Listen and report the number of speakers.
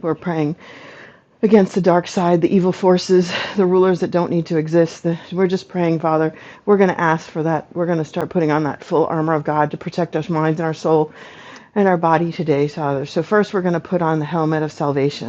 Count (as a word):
one